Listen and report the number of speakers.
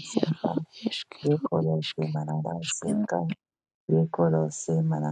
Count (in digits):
2